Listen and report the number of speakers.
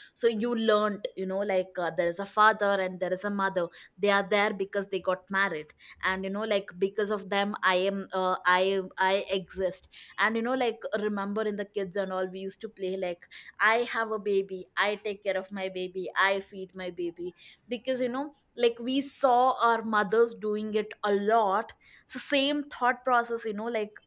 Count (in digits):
1